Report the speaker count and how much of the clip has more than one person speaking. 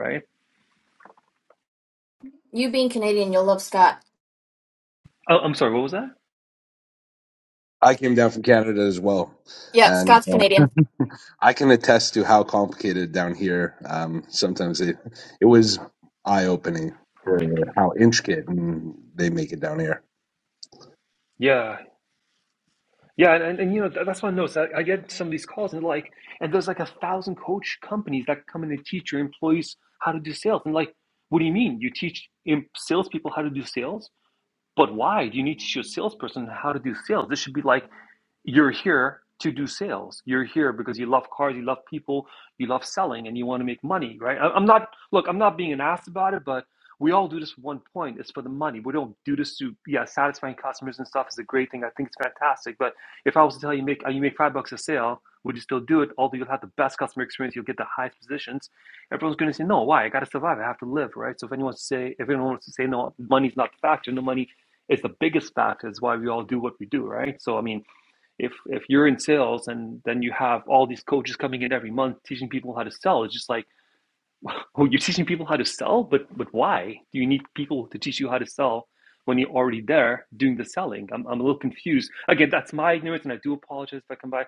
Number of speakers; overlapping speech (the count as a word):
three, under 1%